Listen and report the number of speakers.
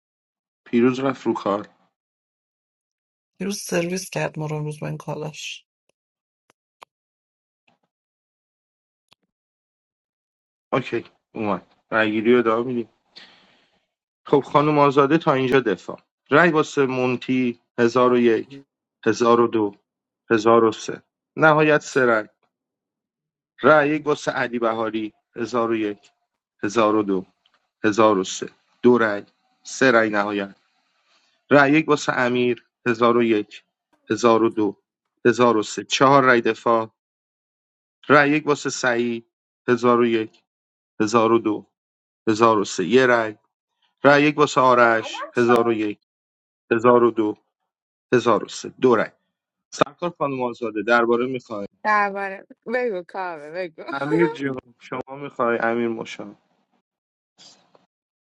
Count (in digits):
3